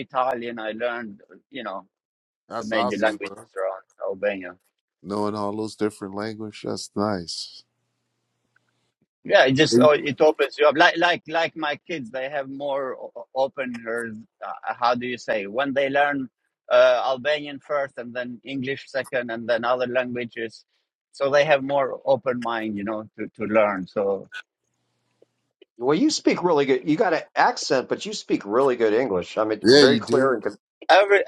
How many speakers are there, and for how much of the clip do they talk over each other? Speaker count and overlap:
3, about 5%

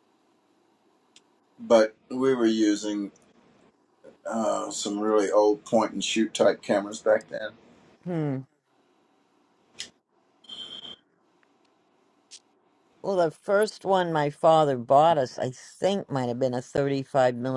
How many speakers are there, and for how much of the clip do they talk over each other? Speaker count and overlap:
2, no overlap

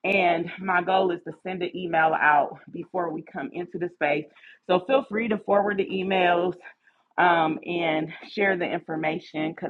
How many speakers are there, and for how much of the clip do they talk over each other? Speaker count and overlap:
1, no overlap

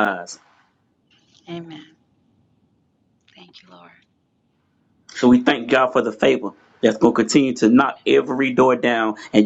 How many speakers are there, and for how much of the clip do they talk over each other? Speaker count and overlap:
2, about 1%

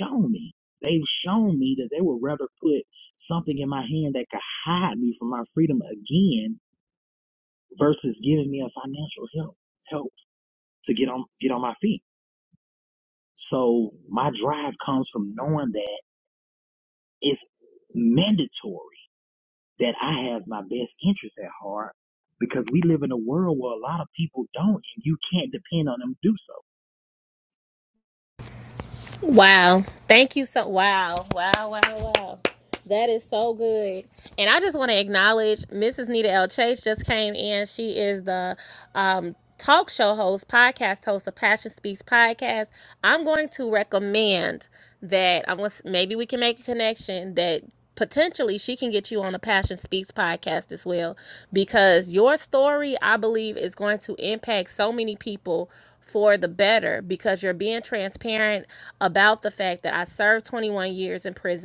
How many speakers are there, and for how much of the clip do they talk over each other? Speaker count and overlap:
2, no overlap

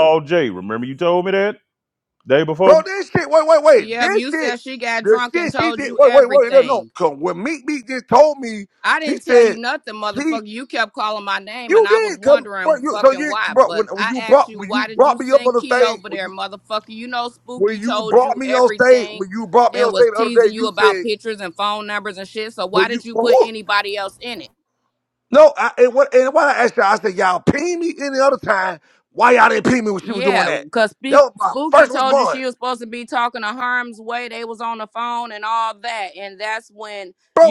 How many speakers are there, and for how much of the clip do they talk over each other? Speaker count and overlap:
3, about 36%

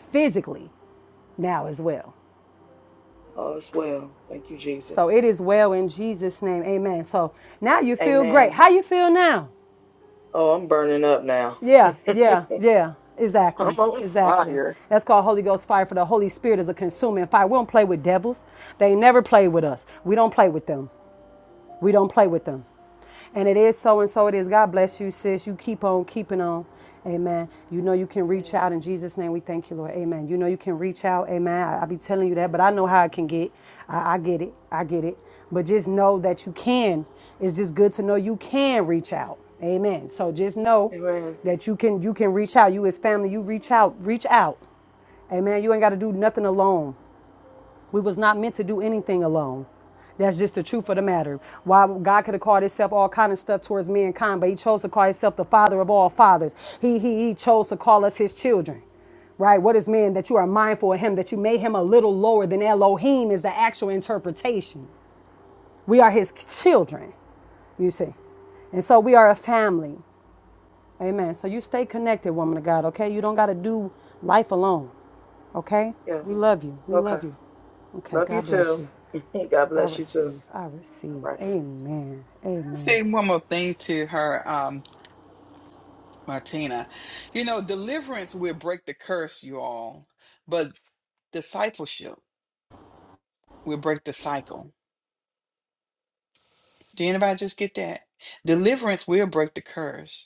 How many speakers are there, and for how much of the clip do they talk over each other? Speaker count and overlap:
3, about 4%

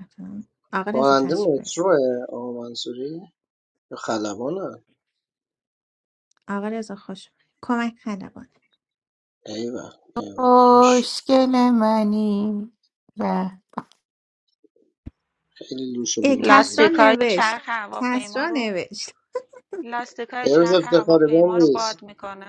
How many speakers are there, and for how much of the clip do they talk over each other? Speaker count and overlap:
4, about 21%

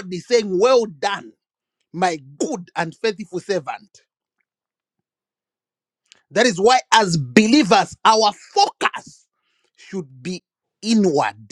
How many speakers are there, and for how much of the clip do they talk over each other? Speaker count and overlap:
1, no overlap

